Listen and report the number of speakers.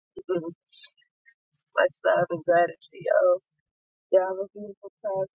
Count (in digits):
1